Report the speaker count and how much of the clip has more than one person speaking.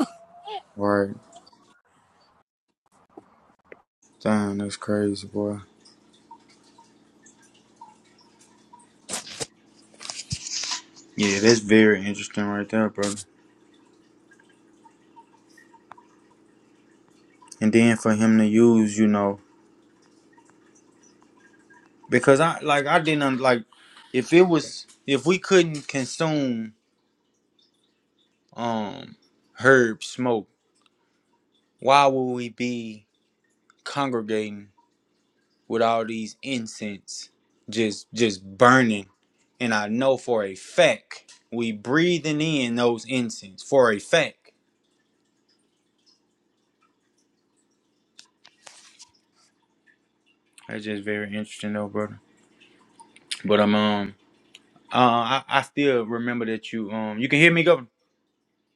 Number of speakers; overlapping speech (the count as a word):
one, no overlap